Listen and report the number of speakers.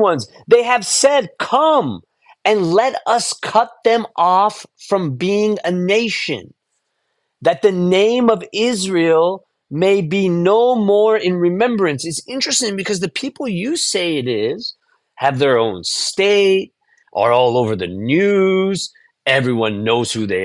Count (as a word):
one